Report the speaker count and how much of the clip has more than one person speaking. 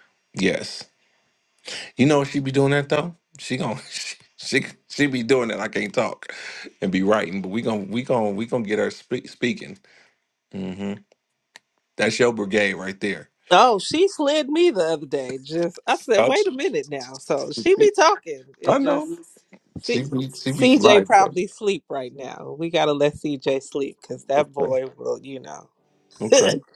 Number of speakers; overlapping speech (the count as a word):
two, about 7%